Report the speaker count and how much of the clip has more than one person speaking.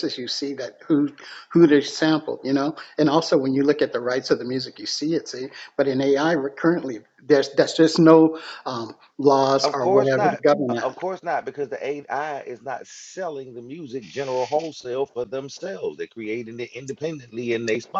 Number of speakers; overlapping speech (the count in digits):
2, about 8%